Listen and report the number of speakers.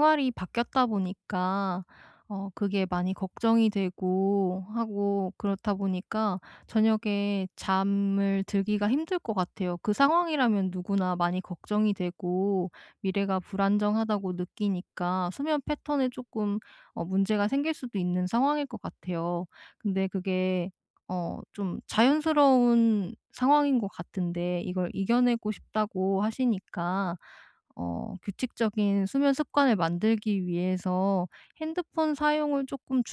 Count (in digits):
1